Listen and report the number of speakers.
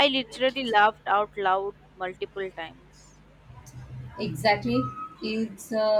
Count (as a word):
two